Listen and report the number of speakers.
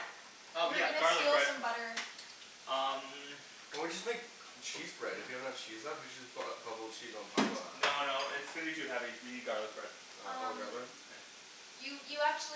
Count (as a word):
three